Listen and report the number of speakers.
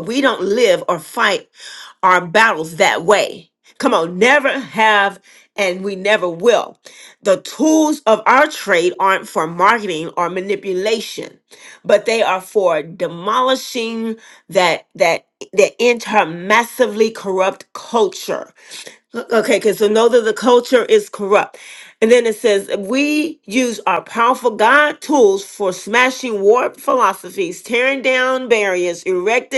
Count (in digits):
1